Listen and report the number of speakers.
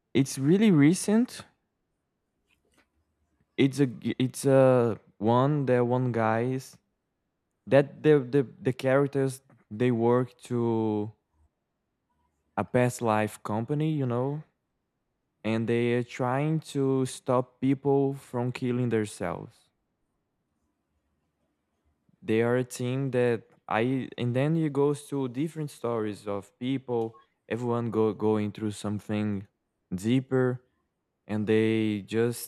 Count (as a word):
one